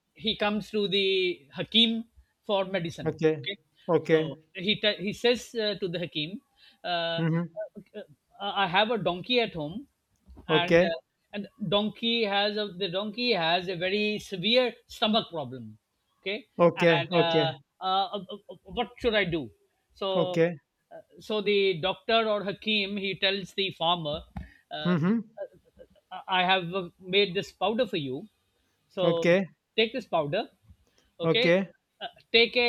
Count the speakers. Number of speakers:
2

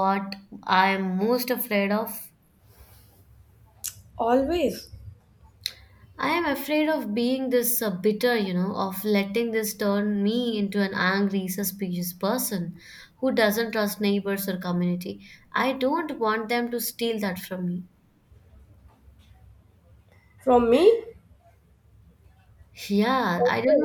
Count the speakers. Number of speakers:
2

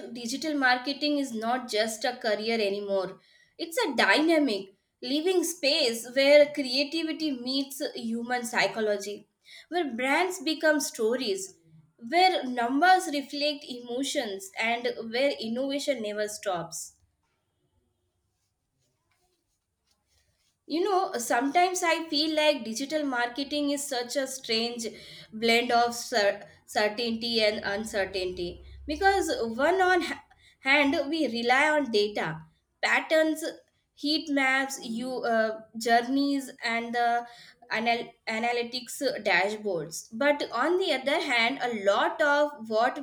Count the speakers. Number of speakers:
1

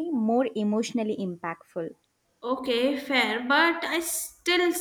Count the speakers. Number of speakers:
2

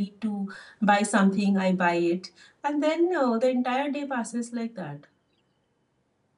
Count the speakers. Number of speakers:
1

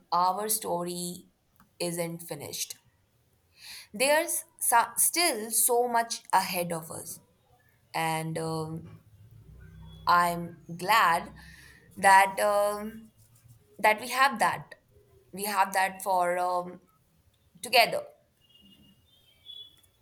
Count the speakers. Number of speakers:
1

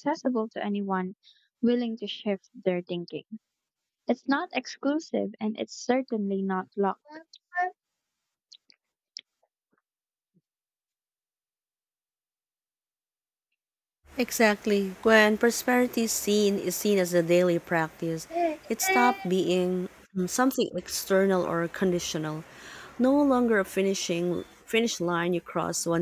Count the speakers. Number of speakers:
2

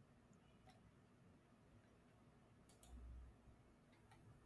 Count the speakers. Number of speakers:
0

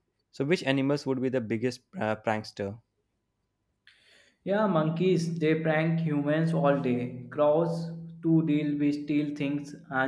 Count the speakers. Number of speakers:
2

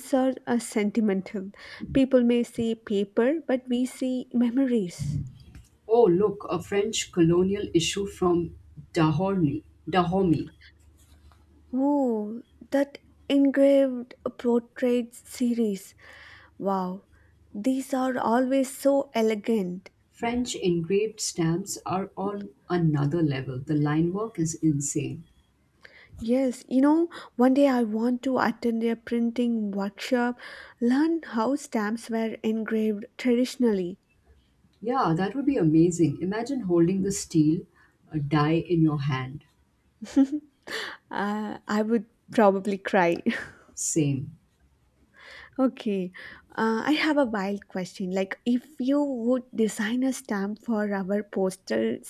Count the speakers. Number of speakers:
2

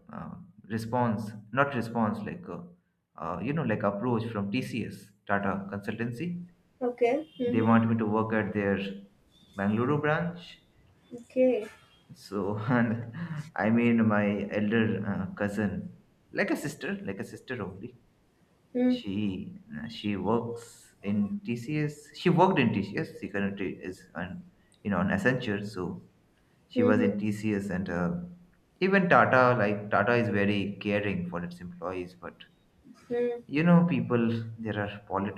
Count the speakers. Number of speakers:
2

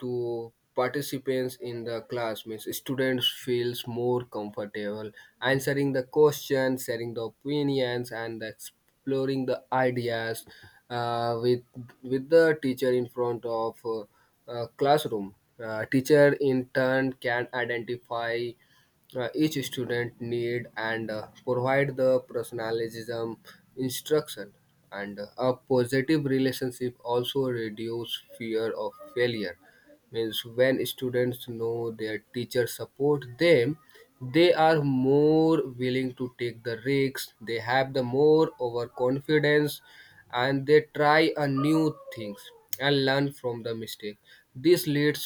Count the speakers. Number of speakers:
1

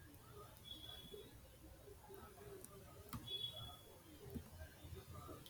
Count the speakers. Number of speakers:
0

